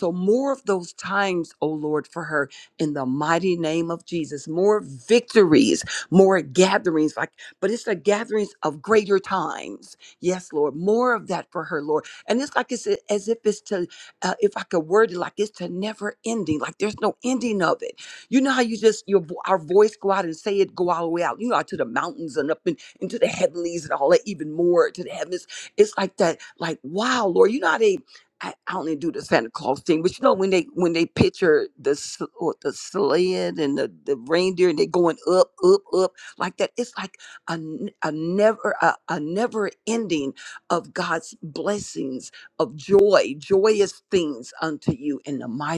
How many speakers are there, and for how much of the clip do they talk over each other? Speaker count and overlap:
one, no overlap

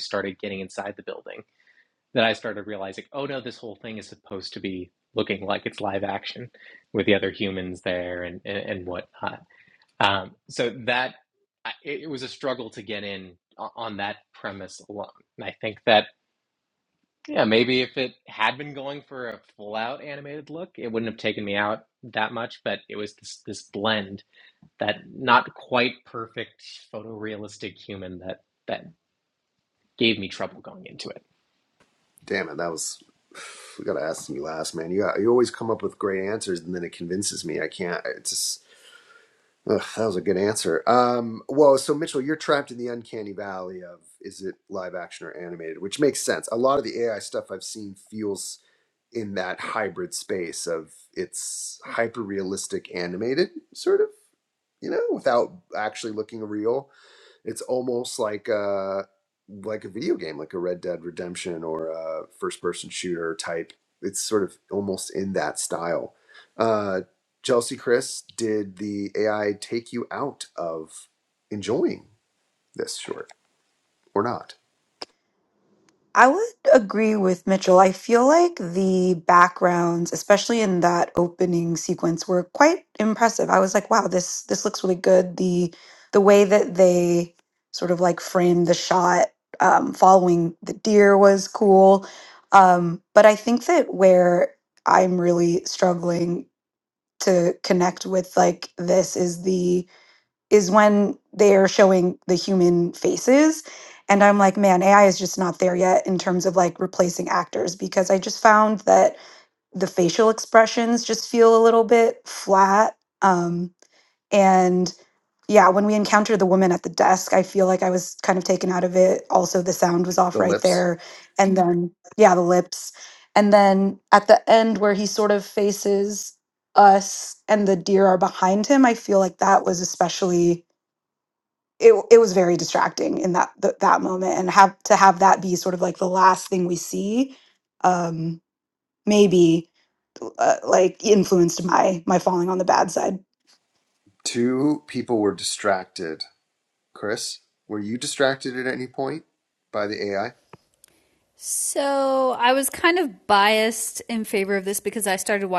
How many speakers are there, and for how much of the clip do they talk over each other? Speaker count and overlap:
four, under 1%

